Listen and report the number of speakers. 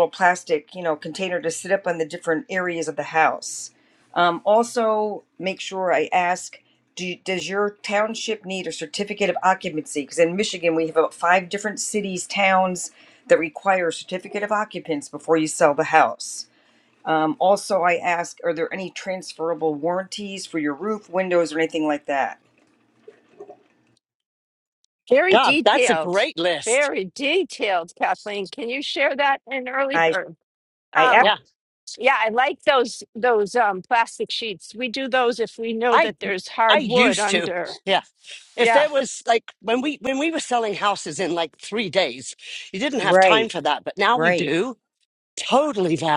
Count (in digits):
3